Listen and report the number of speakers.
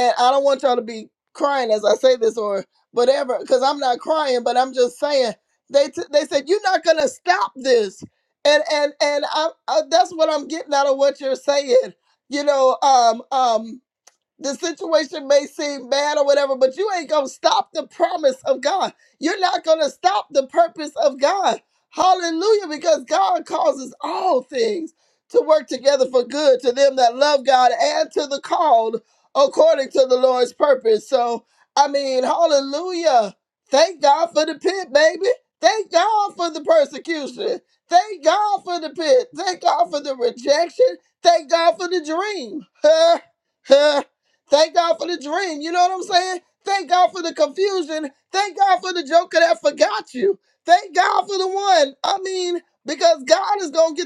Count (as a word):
one